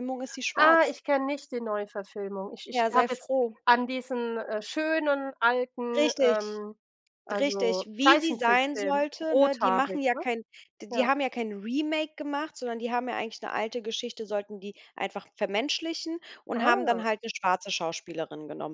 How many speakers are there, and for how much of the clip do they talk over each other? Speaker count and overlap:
two, about 25%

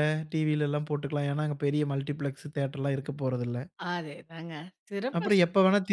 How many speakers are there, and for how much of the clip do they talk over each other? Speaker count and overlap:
two, about 6%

